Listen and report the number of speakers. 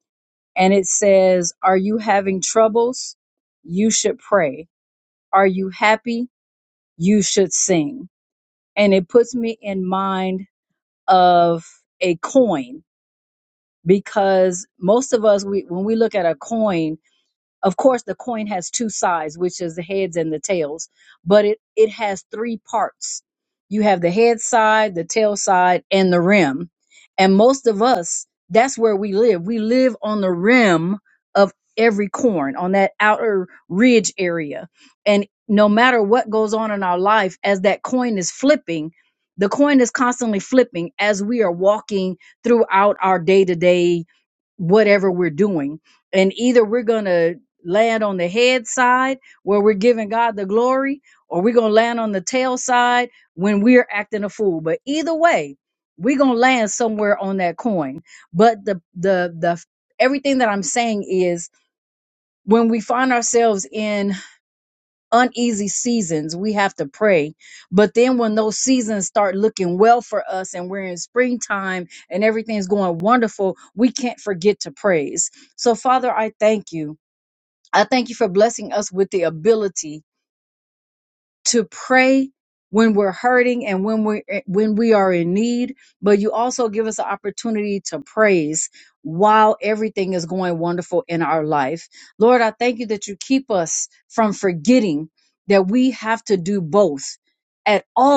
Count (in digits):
1